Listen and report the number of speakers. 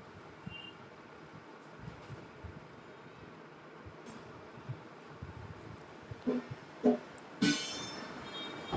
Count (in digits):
0